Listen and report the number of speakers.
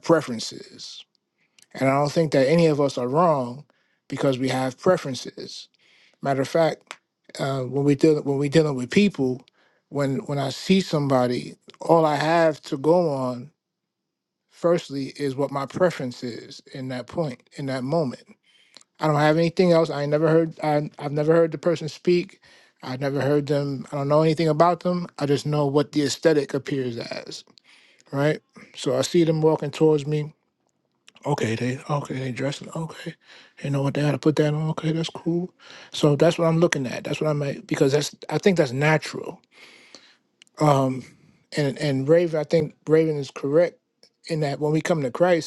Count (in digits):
1